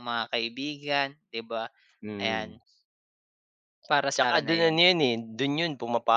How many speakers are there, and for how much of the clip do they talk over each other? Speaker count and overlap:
two, about 15%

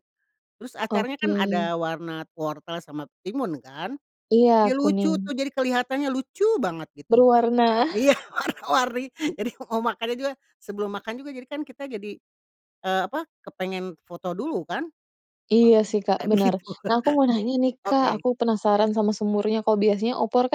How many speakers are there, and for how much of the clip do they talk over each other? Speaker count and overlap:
two, about 13%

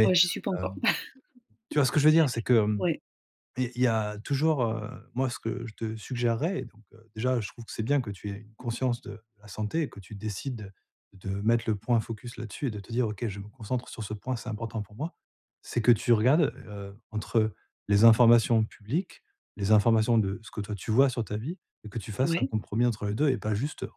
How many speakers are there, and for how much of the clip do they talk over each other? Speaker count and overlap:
two, about 3%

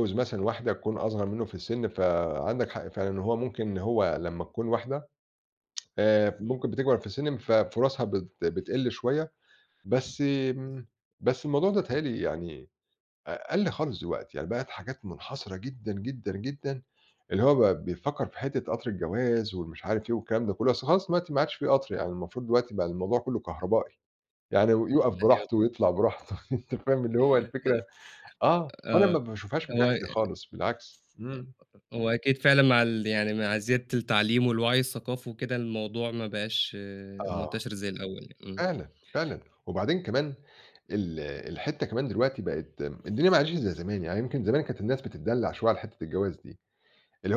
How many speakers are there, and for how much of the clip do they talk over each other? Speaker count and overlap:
two, about 4%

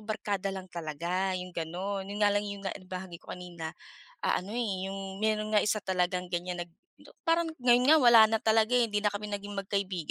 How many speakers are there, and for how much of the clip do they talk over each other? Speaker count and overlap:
one, no overlap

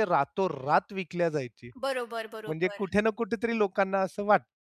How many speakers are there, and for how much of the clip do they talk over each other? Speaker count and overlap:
two, about 9%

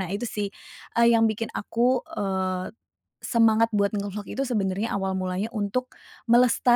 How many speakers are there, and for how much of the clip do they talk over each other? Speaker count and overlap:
one, no overlap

